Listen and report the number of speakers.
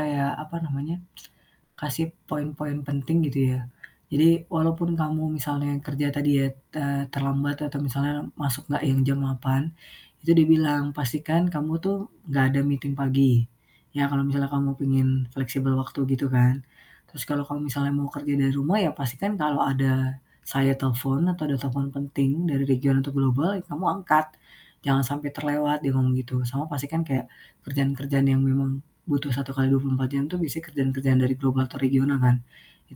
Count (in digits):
1